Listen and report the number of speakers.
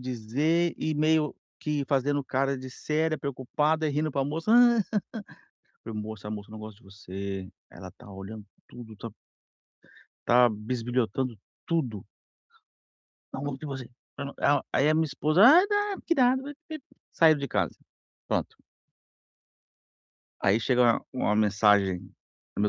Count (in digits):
1